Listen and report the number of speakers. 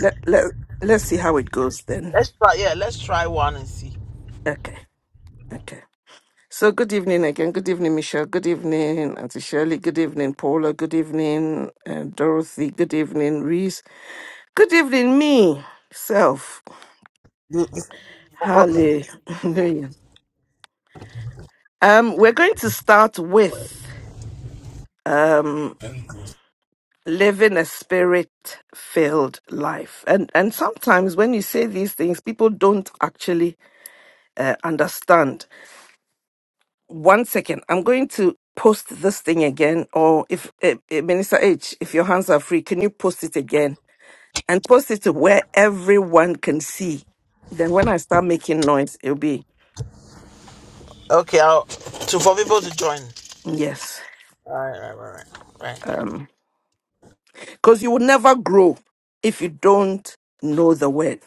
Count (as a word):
two